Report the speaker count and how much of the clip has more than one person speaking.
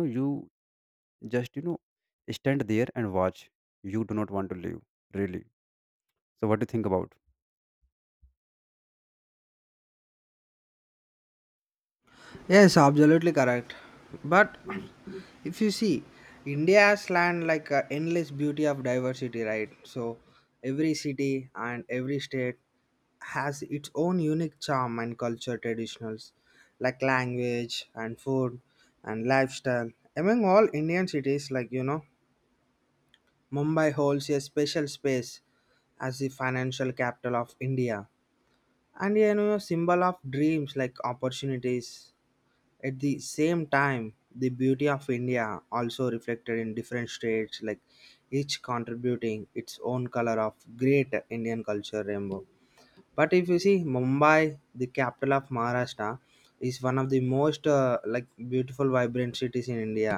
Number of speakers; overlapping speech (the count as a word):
two, no overlap